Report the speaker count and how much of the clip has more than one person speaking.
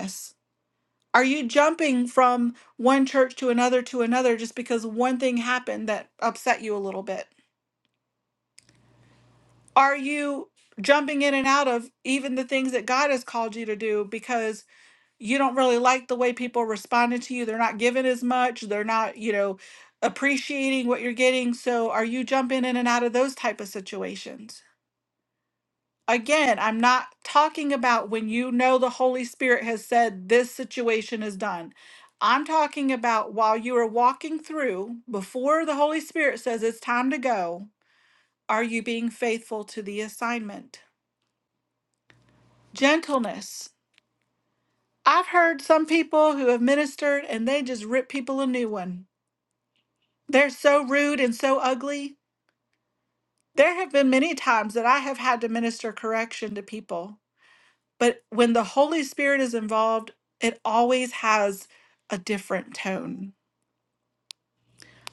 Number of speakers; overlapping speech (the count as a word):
one, no overlap